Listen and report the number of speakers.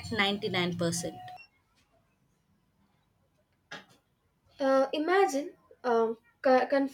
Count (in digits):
2